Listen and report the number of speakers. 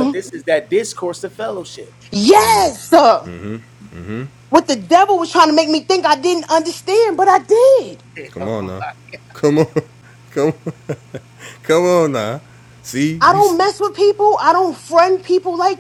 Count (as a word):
three